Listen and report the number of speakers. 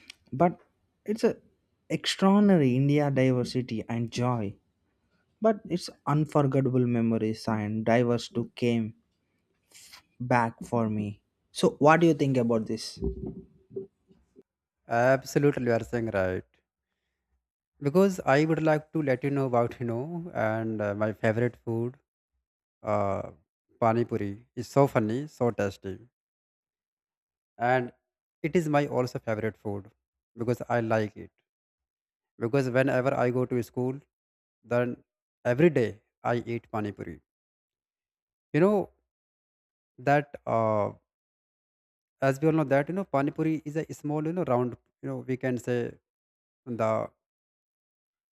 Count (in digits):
2